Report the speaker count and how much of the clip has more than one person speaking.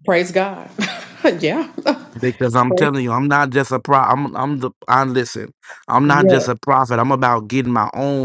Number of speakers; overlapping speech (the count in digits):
2, about 8%